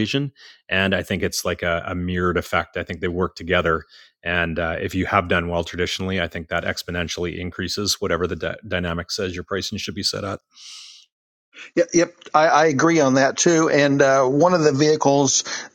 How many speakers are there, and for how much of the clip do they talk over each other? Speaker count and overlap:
2, no overlap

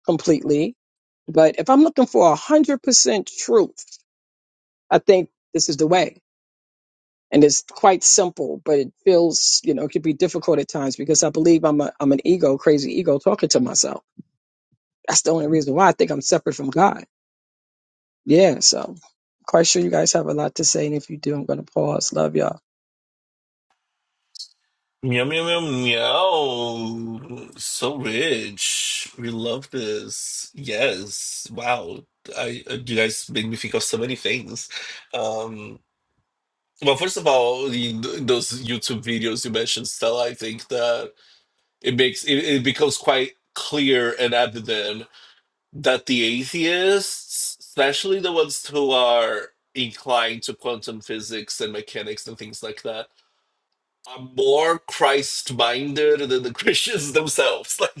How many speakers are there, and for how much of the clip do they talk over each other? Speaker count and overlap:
2, no overlap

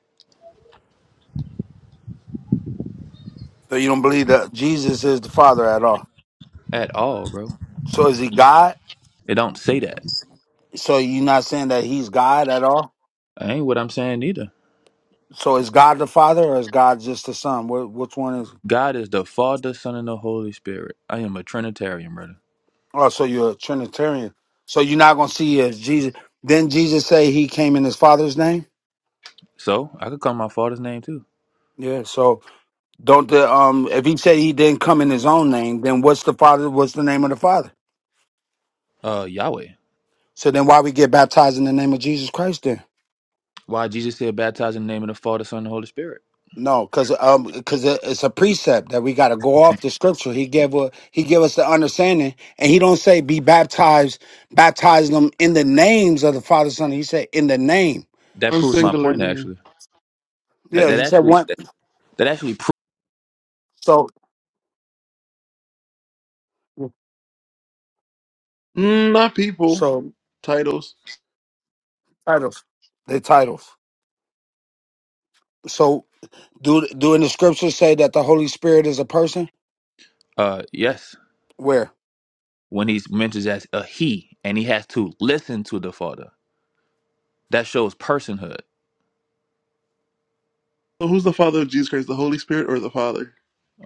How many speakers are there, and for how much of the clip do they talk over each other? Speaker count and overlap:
3, about 2%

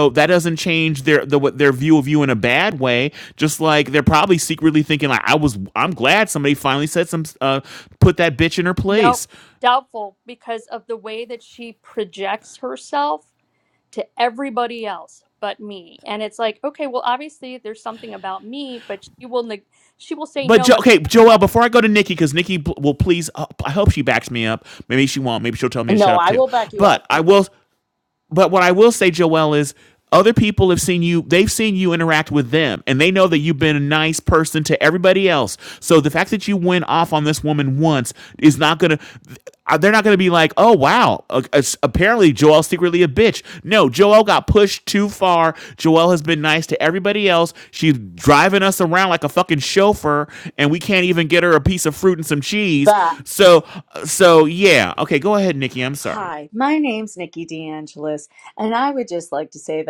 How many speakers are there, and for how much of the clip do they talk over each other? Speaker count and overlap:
3, about 4%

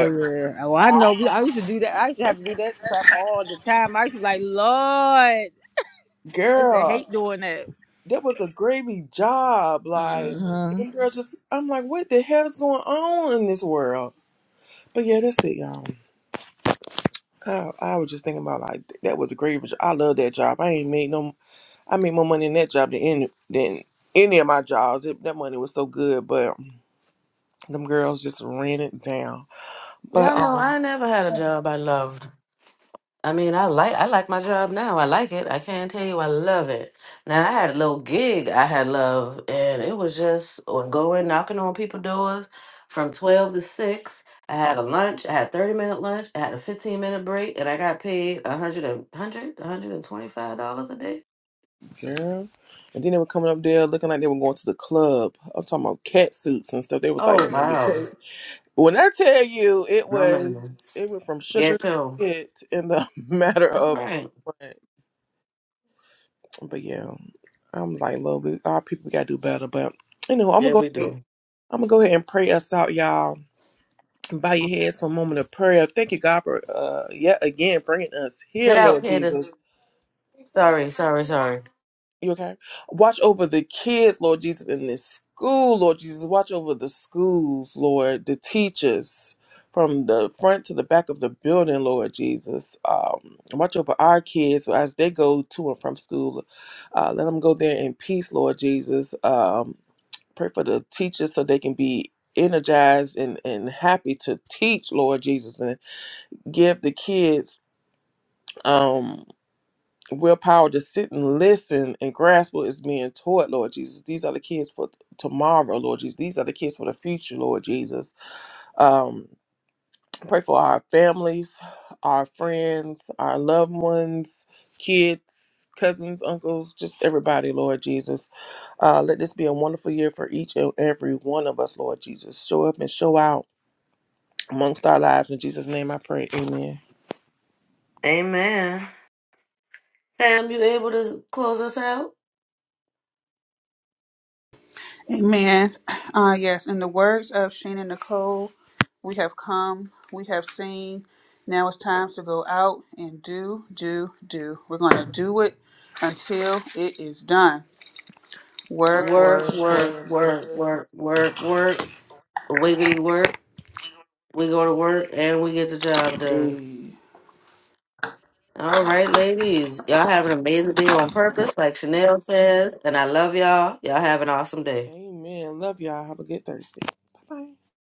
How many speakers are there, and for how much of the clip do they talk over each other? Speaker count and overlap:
4, about 4%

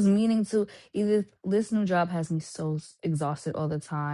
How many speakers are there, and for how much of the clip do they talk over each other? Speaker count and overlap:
1, no overlap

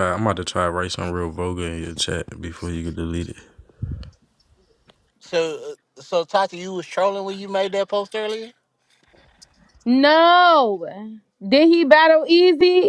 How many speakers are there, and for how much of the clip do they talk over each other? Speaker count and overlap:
3, no overlap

